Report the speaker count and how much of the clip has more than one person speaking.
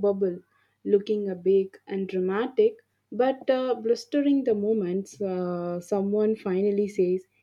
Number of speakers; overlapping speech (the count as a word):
one, no overlap